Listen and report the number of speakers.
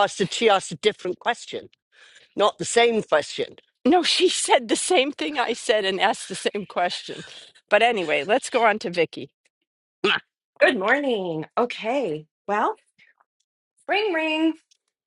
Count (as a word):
three